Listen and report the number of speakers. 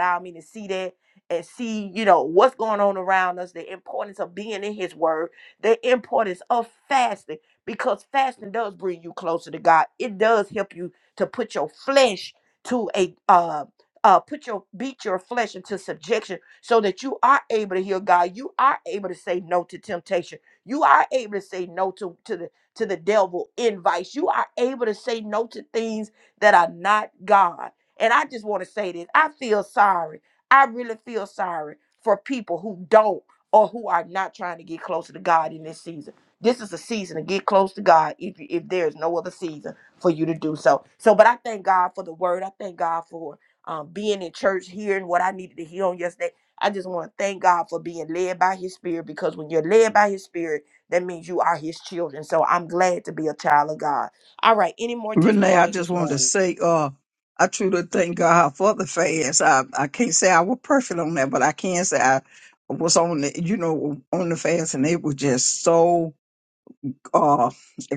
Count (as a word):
two